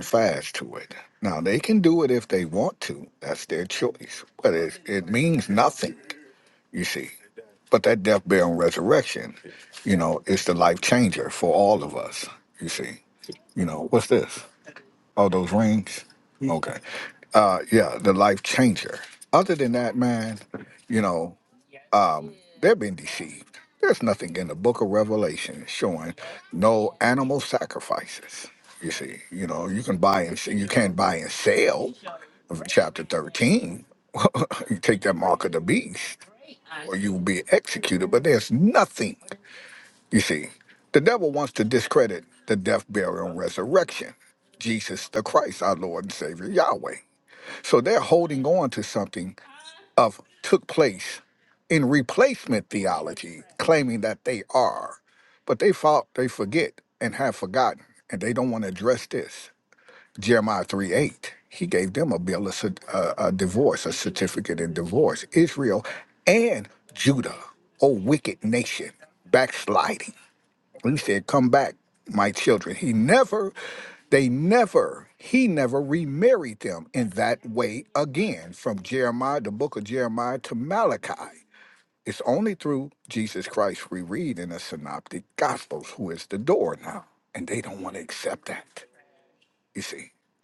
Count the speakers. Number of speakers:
1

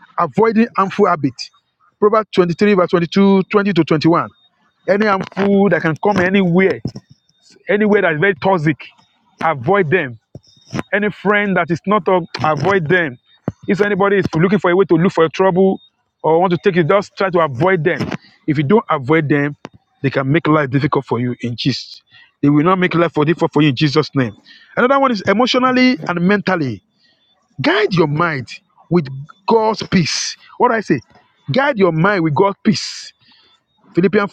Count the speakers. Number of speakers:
1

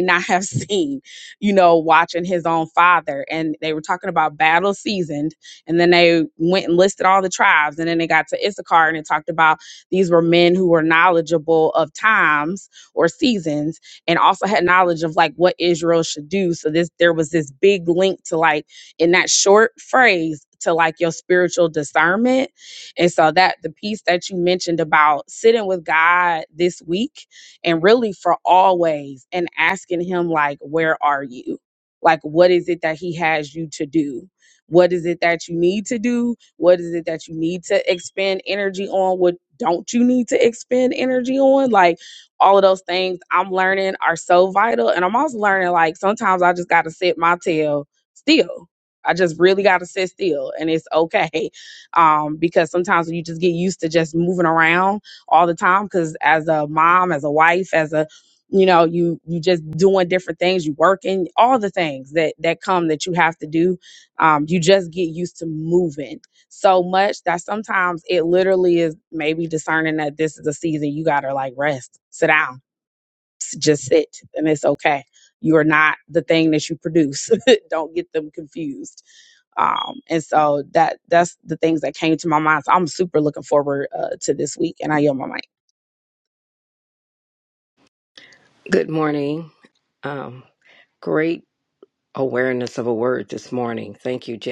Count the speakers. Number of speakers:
2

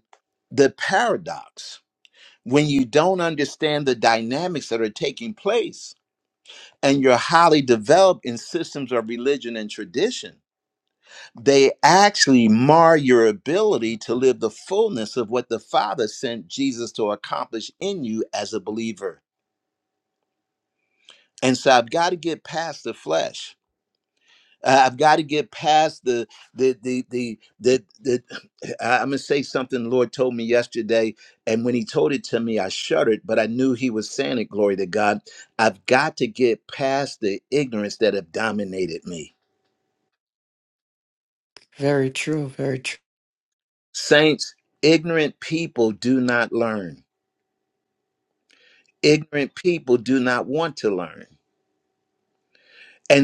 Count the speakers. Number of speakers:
2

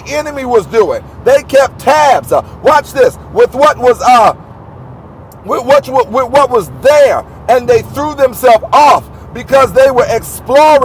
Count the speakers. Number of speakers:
1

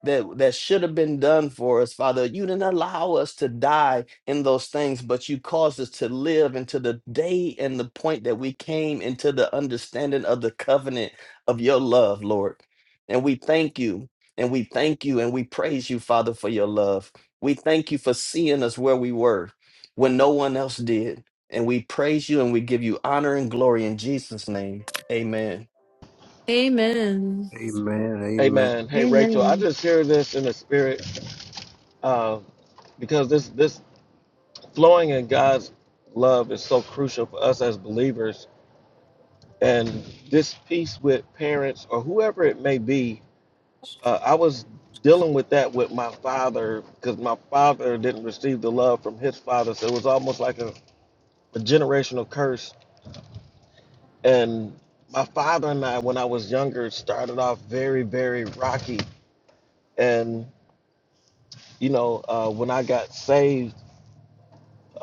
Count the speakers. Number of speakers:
4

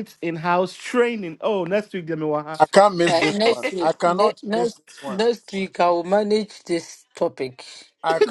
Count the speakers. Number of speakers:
3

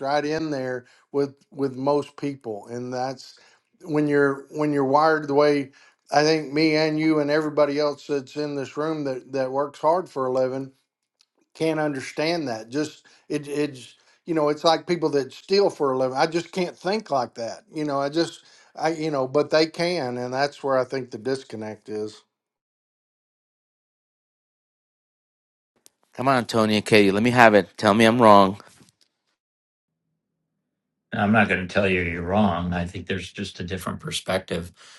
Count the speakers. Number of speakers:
3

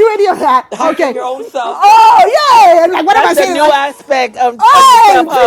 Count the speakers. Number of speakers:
3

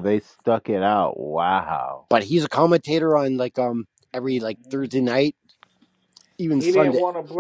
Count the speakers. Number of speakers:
3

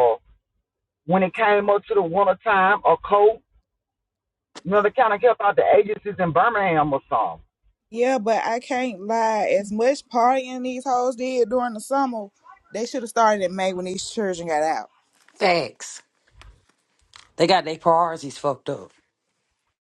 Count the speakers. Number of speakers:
3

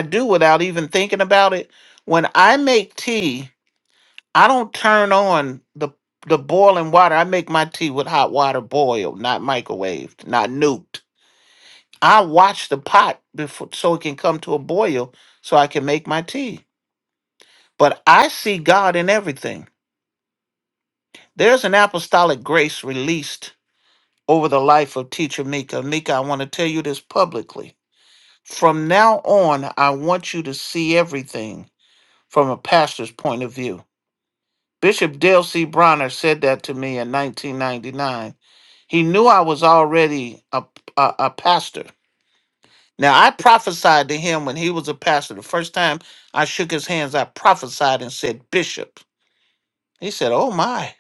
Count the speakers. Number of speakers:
1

